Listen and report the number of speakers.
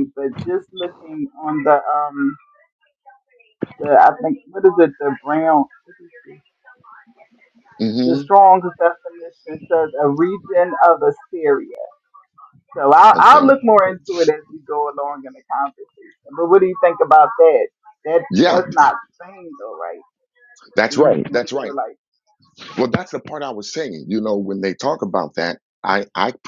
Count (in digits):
2